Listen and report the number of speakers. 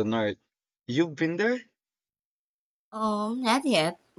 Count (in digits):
2